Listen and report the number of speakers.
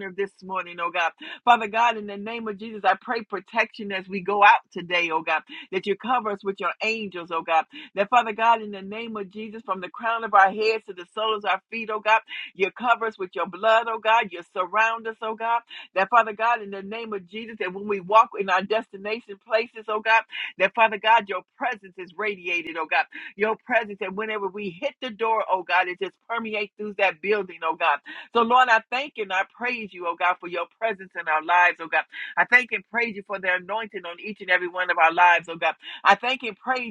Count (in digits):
1